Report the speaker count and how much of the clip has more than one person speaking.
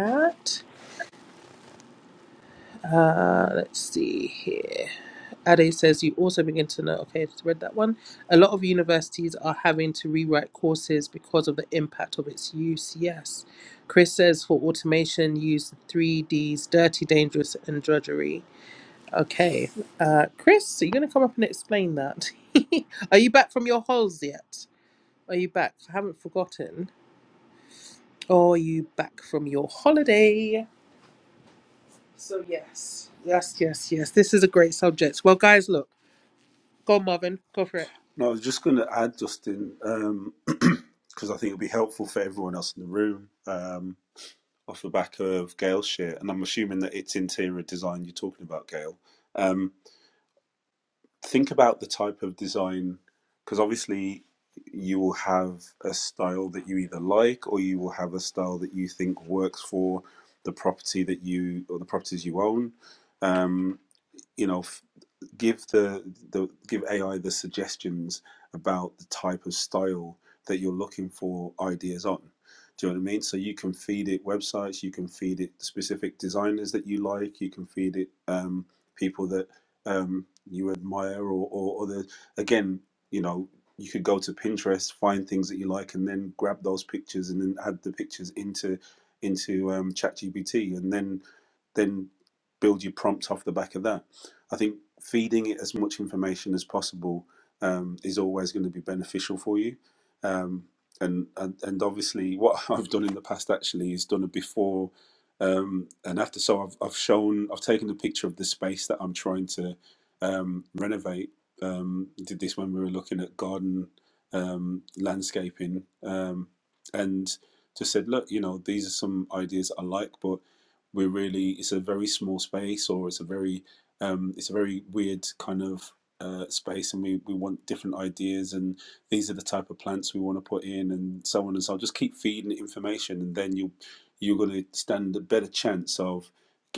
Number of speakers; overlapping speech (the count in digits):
2, no overlap